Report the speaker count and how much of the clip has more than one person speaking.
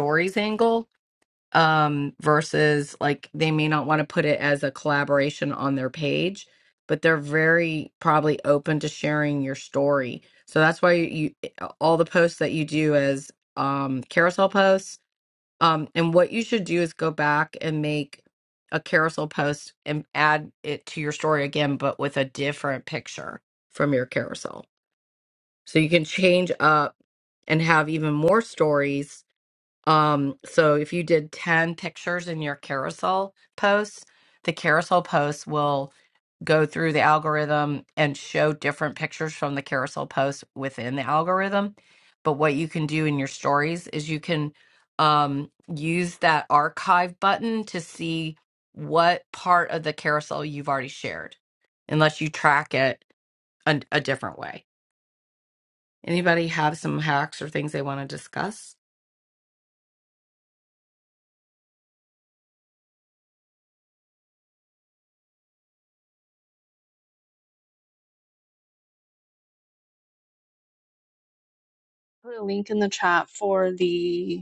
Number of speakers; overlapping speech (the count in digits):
2, no overlap